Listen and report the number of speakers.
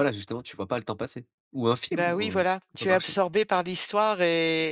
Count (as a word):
two